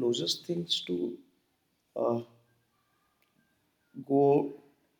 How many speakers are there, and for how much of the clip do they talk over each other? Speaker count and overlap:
1, no overlap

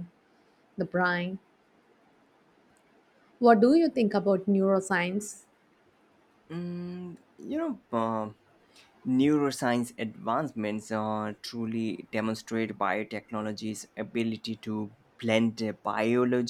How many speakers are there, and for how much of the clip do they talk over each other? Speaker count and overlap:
2, no overlap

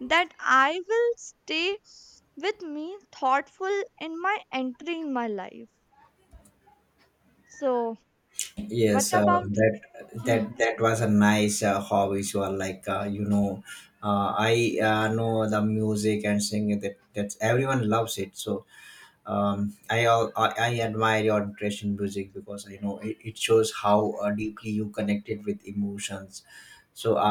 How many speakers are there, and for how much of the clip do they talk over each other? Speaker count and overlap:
2, about 3%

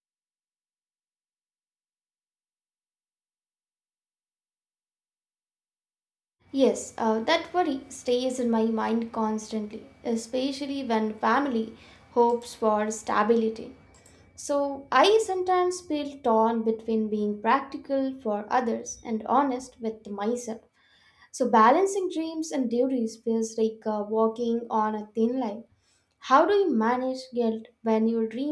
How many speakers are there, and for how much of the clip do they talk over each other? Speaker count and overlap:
1, no overlap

